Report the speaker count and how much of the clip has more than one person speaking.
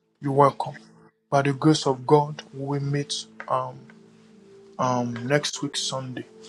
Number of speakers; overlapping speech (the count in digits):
1, no overlap